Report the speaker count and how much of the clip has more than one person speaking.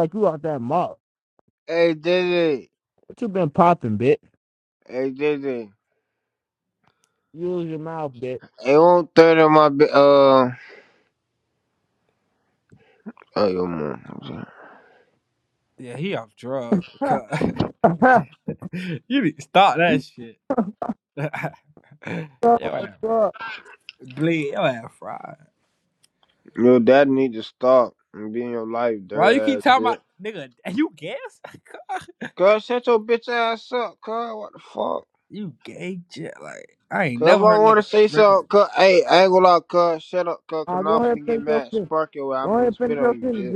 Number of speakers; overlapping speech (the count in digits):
3, about 10%